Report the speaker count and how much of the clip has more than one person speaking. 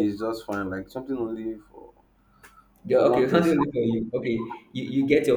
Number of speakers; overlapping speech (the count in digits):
2, about 13%